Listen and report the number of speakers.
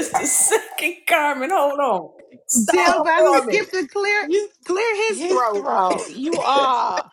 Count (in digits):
3